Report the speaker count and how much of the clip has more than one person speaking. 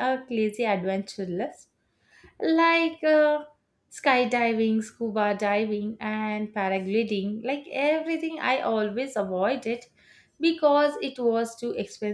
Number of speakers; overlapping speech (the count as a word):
one, no overlap